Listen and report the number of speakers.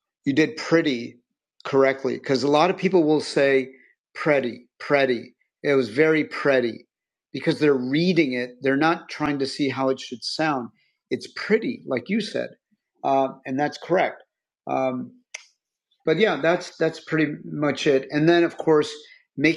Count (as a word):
one